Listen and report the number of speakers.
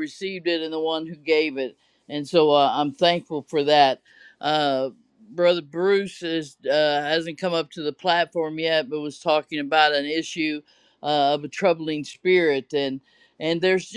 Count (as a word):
one